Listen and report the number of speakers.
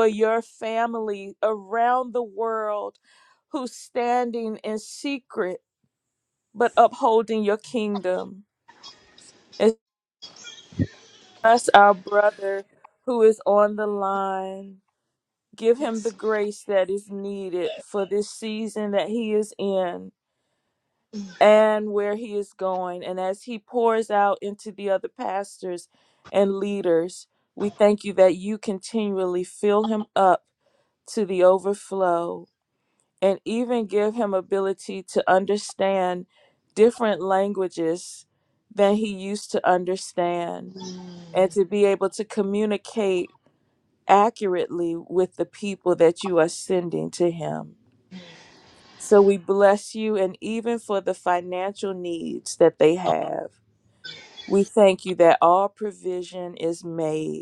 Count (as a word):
one